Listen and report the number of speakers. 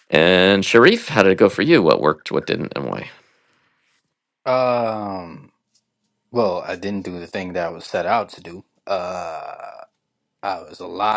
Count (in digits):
2